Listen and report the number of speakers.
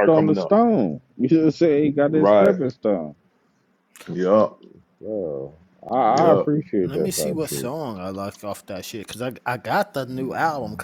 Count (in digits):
3